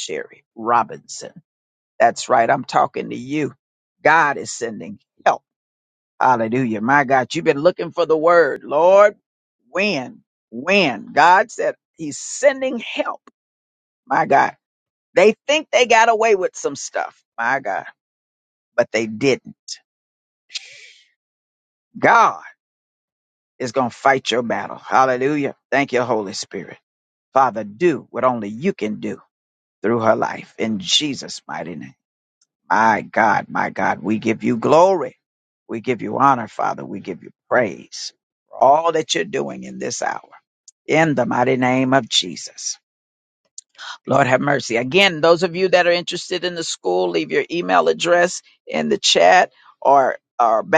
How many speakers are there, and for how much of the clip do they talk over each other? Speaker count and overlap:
one, no overlap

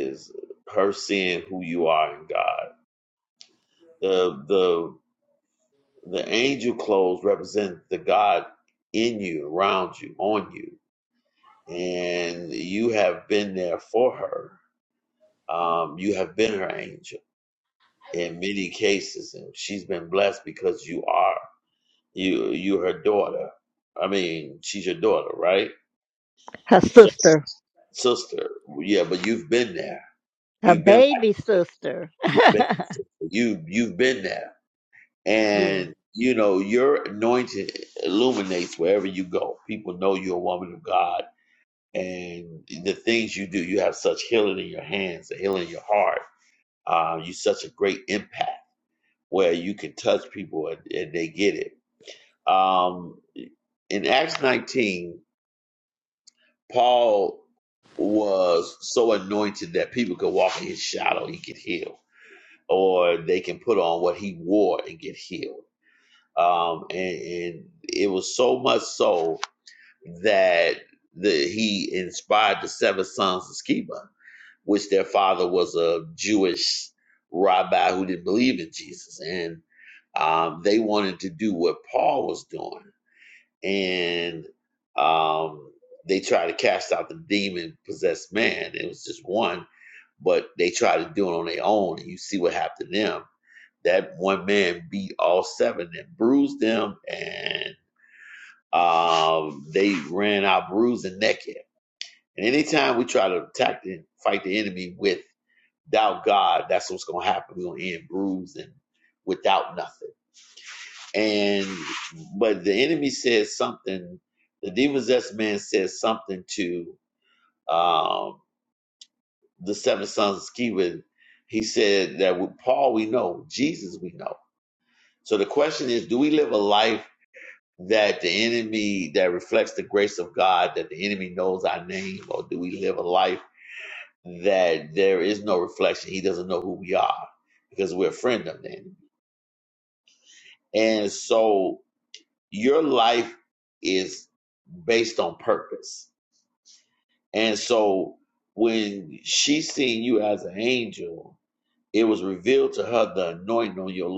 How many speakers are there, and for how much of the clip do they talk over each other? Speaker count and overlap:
two, about 1%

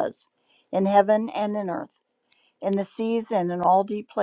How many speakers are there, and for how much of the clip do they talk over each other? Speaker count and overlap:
one, no overlap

